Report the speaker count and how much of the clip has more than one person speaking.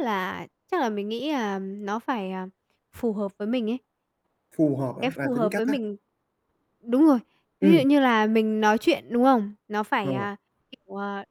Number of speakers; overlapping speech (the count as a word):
two, about 11%